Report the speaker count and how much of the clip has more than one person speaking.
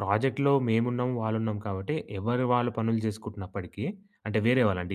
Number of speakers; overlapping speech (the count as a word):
one, no overlap